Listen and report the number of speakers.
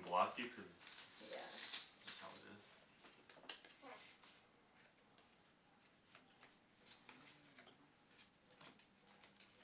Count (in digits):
1